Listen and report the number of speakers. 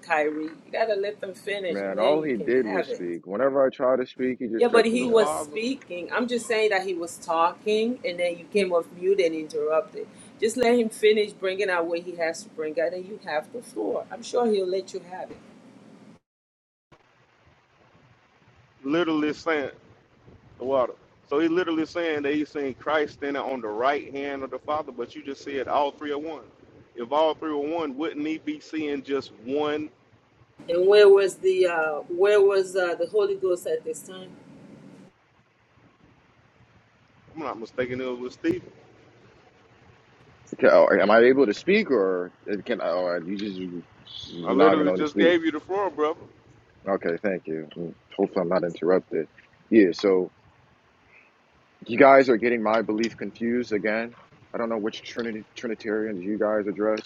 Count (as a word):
three